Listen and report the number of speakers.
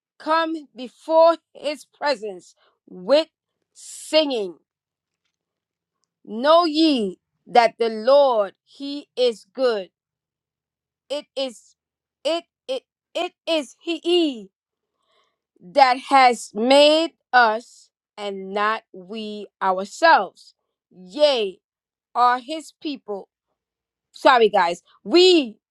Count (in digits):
1